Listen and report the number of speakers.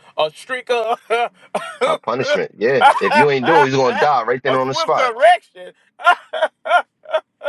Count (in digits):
2